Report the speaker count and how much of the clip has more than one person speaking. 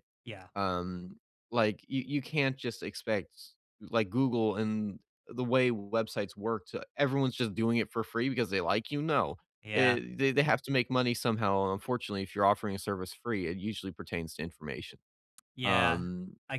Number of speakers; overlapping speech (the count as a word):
two, about 3%